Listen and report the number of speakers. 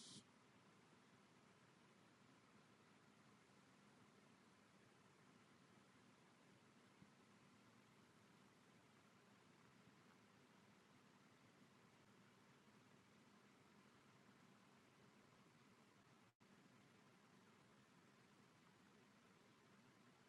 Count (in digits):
0